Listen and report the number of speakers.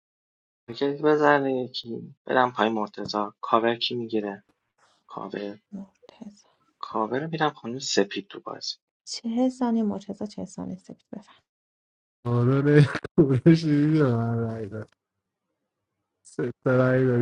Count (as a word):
three